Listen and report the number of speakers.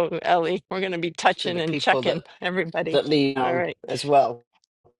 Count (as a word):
two